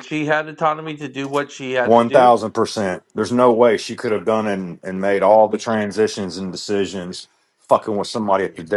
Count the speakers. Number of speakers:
2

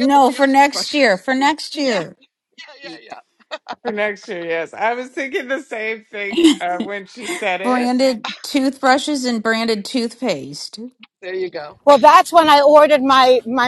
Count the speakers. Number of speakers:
4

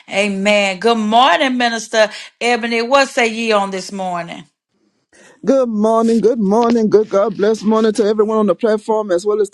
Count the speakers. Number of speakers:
2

